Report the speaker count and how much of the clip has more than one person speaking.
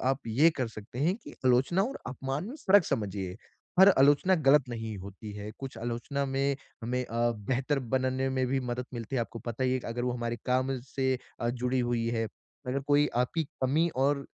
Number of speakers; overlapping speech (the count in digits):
1, no overlap